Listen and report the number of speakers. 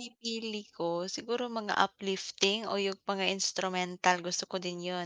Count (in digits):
1